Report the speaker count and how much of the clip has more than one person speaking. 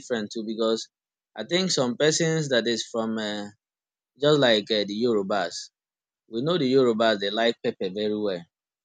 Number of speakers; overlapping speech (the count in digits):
1, no overlap